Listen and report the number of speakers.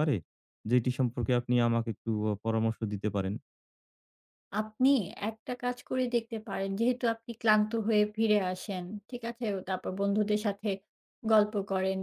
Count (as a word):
two